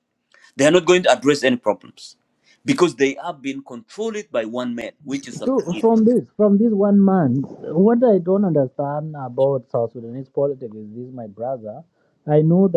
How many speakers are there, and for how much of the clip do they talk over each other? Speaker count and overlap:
2, about 3%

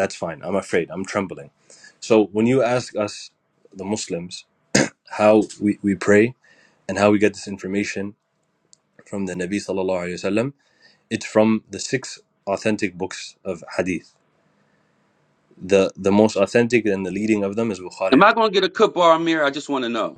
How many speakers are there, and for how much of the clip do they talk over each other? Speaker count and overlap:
2, about 1%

